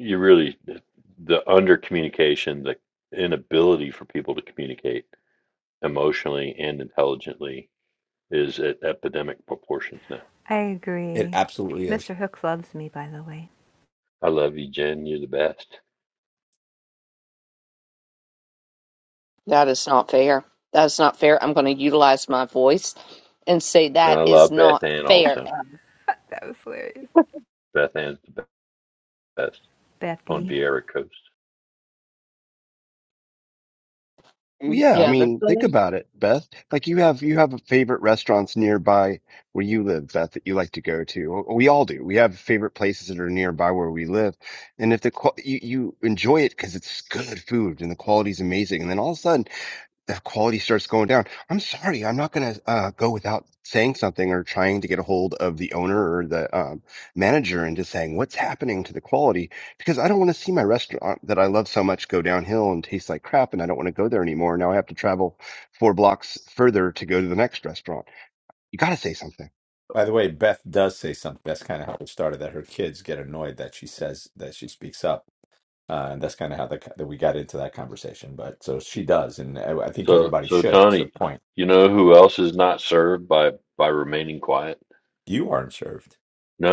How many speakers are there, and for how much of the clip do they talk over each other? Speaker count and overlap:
5, about 4%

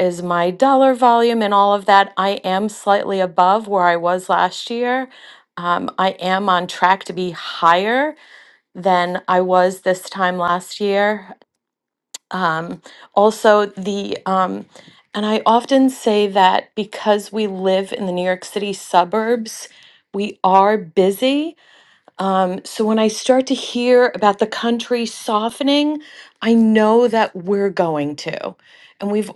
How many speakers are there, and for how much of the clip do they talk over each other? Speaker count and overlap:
1, no overlap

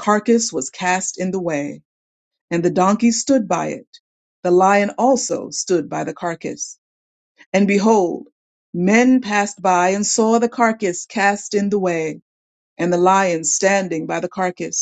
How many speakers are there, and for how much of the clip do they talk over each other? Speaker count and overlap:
1, no overlap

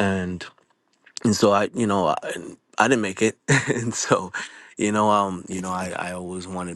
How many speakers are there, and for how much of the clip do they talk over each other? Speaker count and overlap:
1, no overlap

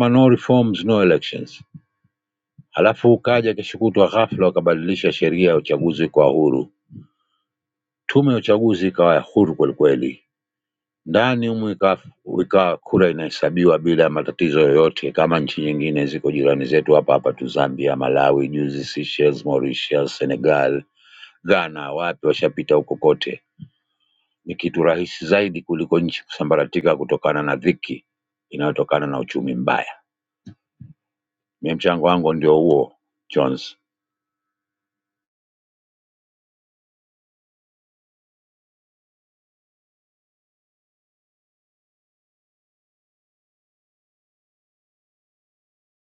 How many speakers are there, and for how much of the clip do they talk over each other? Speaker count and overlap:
1, no overlap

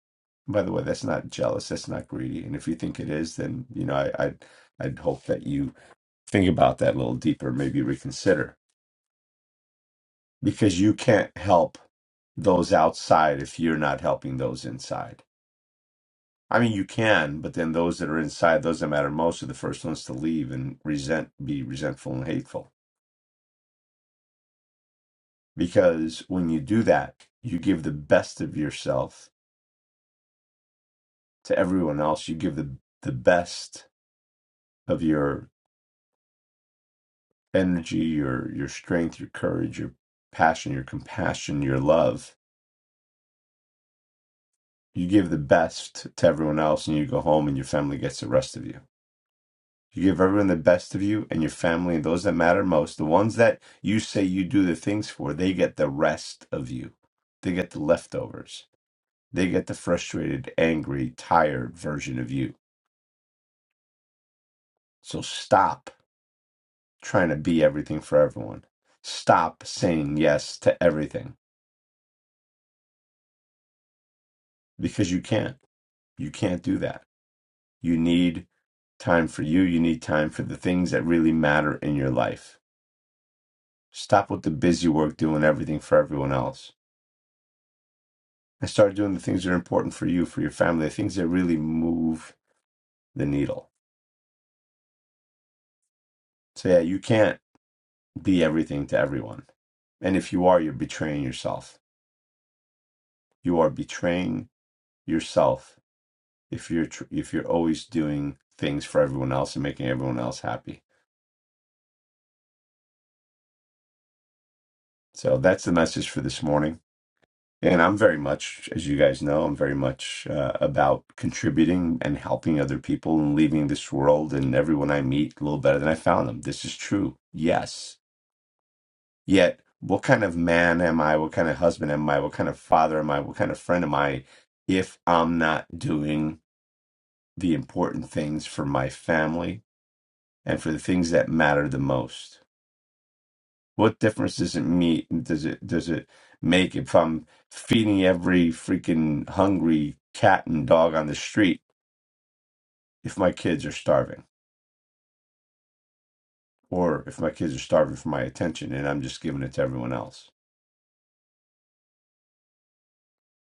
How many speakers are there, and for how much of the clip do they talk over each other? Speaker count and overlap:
1, no overlap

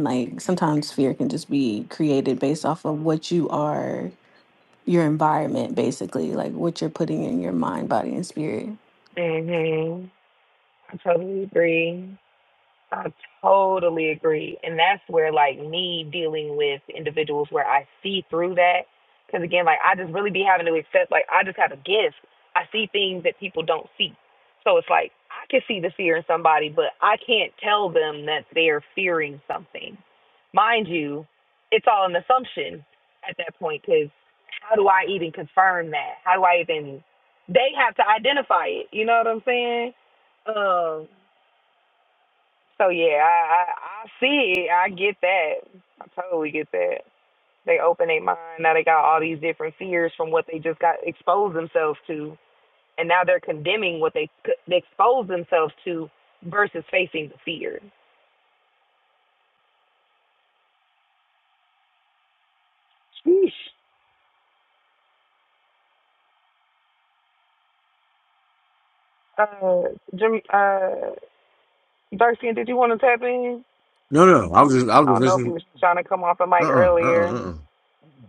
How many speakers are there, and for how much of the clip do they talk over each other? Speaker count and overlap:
3, about 2%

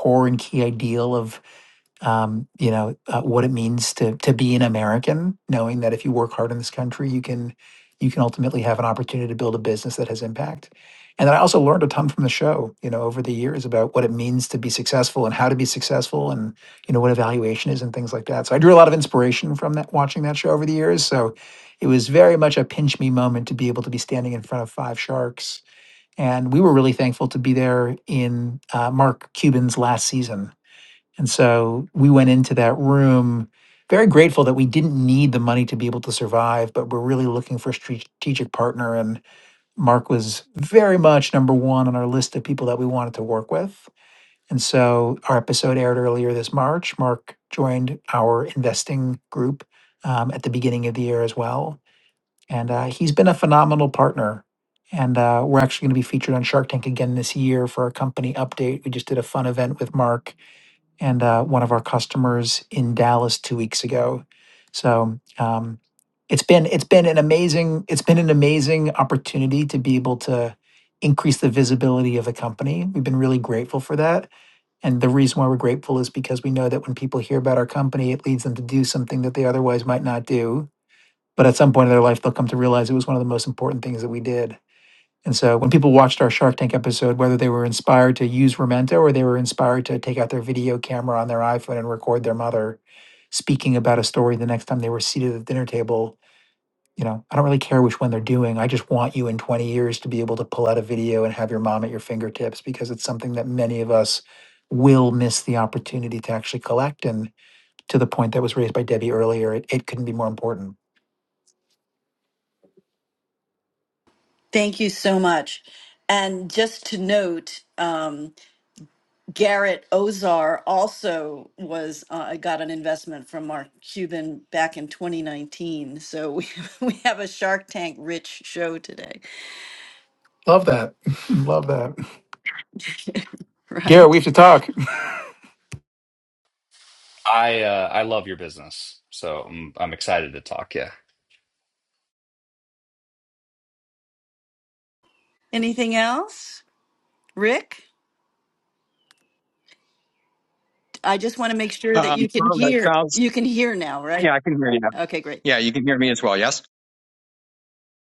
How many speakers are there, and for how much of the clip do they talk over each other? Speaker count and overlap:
4, about 1%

